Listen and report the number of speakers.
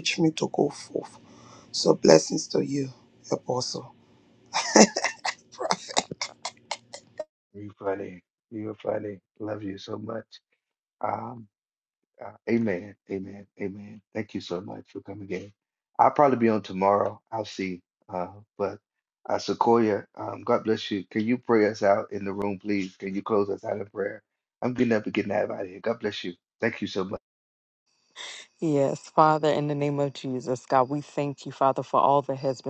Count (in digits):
3